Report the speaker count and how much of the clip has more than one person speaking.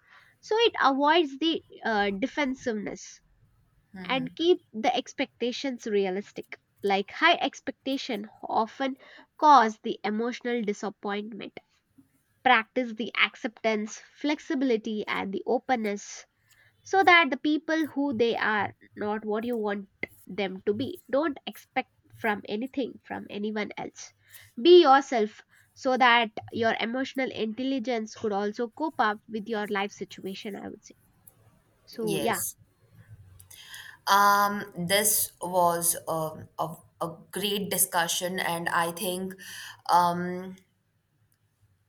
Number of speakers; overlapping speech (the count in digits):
2, about 1%